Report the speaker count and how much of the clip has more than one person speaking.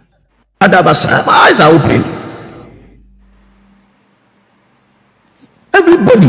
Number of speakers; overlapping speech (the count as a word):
one, no overlap